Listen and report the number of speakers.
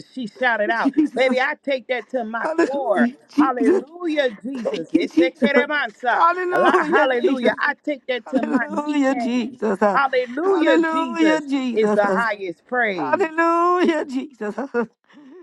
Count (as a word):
two